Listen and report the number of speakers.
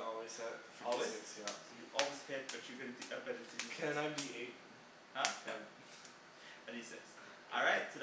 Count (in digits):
2